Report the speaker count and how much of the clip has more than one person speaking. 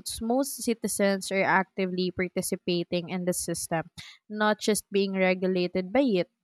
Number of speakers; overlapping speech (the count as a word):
one, no overlap